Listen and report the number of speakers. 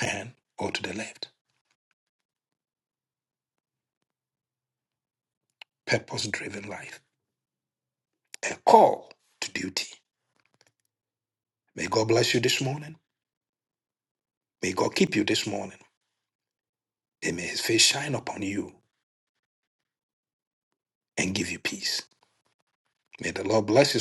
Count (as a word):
one